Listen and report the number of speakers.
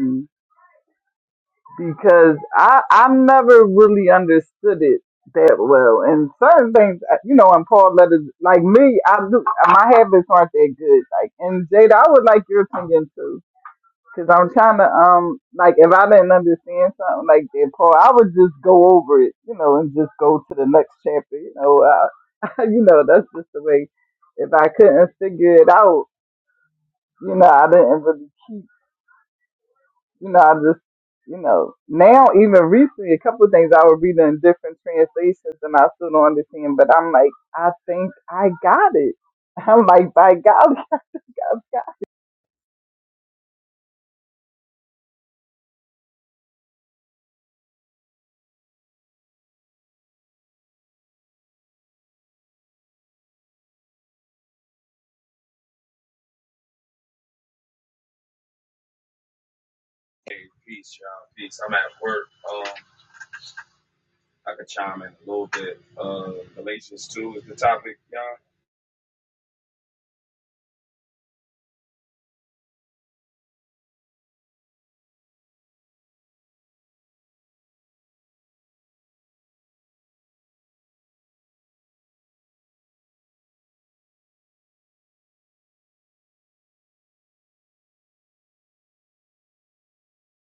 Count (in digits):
2